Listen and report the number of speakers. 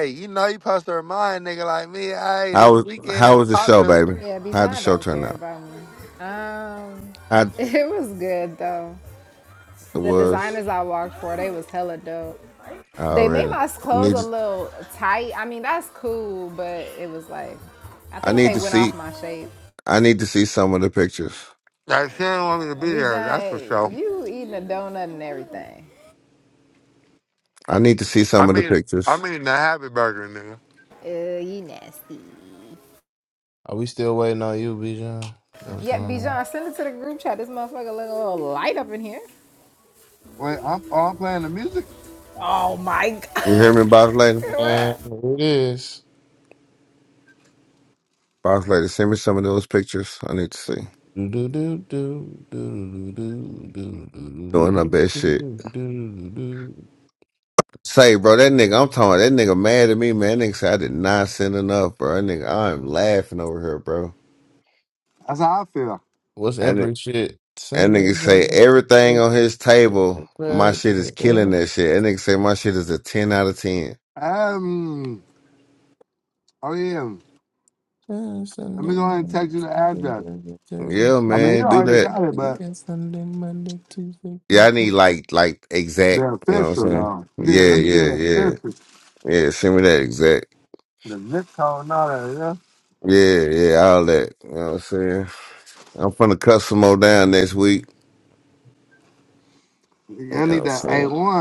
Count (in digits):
4